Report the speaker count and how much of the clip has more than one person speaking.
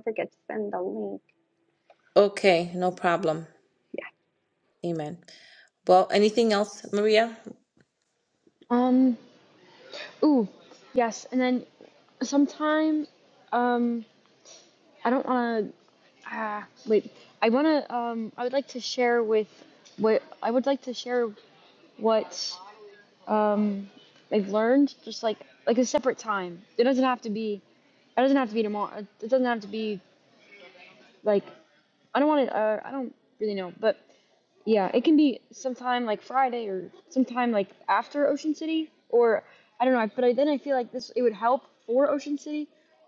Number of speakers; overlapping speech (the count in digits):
3, no overlap